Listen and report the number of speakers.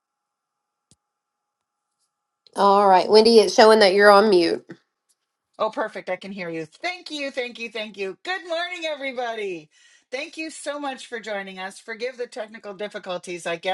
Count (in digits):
2